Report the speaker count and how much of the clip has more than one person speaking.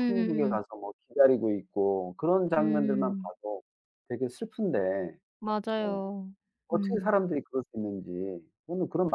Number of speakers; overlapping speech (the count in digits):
2, about 21%